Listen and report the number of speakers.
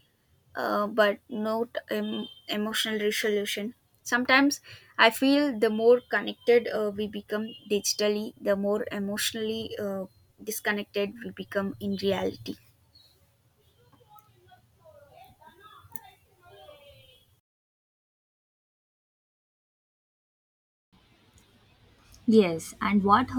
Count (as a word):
two